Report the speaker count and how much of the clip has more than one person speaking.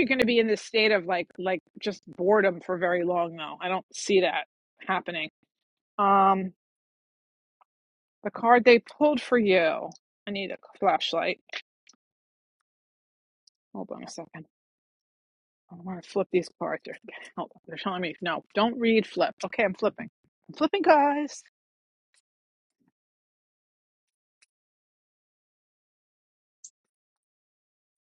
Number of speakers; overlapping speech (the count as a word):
one, no overlap